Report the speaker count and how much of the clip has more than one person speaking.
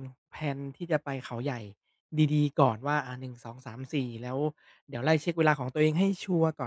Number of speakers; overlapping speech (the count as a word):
one, no overlap